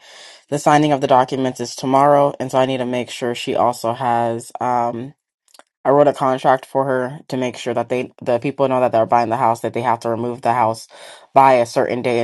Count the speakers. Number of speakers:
1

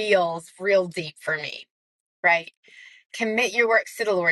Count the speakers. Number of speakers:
1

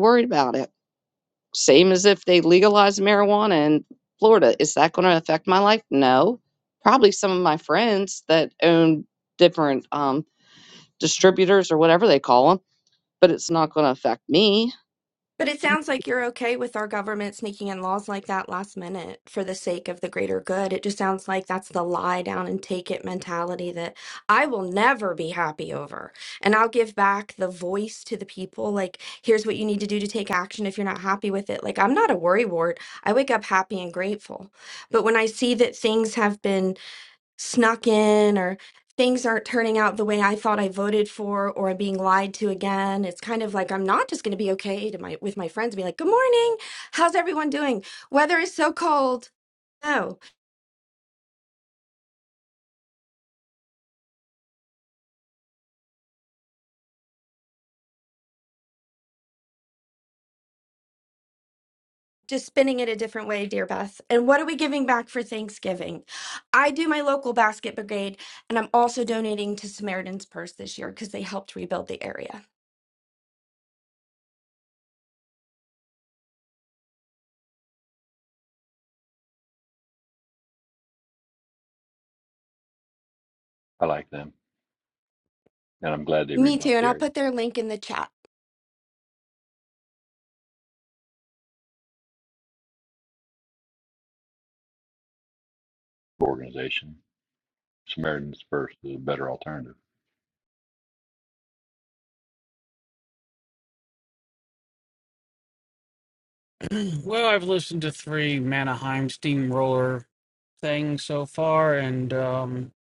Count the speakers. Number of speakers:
4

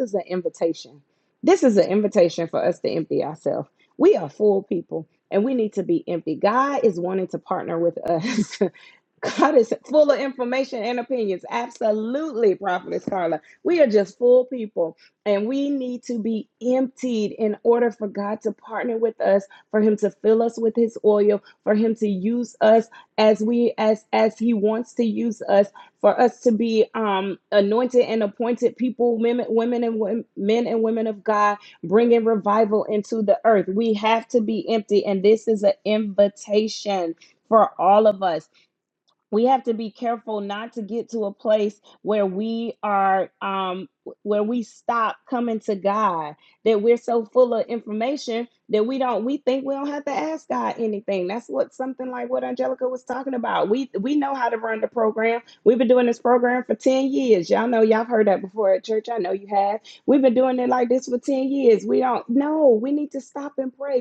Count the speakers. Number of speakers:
1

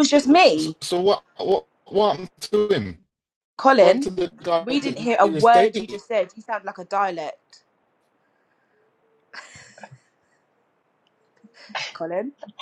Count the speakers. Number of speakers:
2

